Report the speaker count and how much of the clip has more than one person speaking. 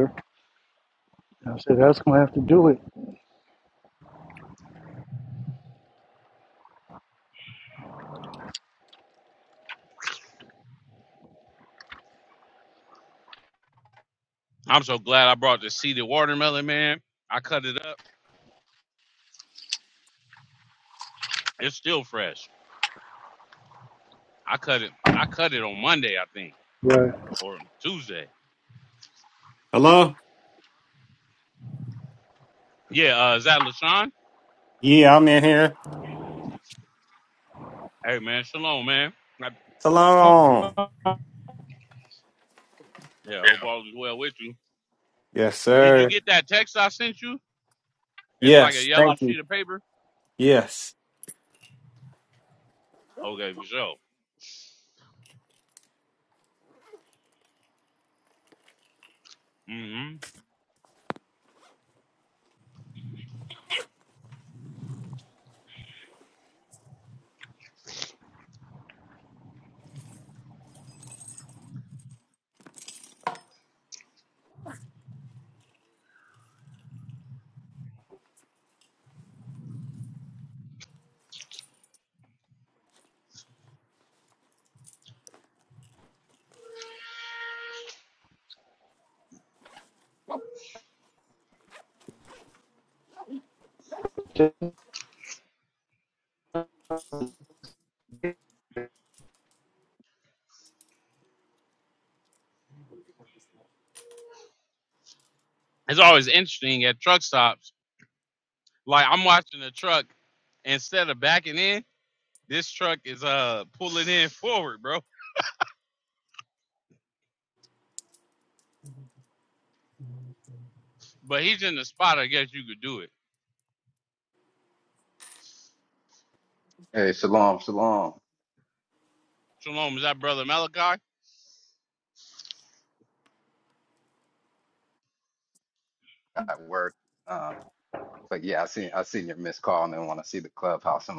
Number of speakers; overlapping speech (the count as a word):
four, about 1%